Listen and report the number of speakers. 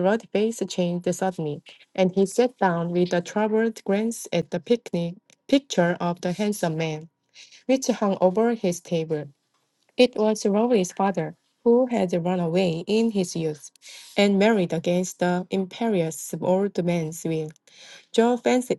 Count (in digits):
1